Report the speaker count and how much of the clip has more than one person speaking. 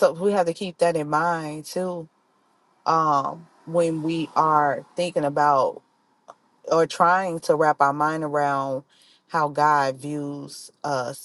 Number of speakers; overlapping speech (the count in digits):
1, no overlap